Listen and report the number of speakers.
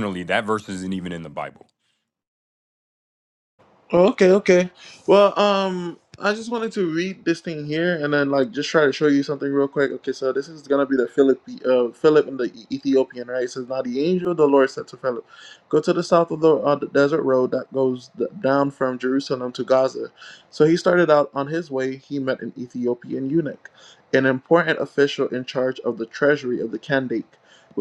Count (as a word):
two